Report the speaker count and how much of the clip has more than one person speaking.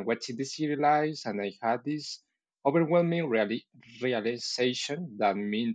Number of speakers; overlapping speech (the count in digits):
1, no overlap